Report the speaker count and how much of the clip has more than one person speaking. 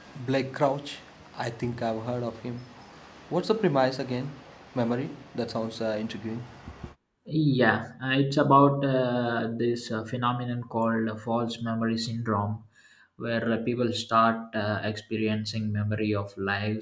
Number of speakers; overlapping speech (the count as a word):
two, no overlap